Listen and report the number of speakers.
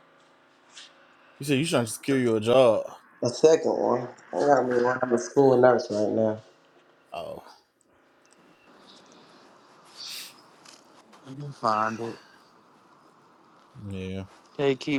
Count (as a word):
three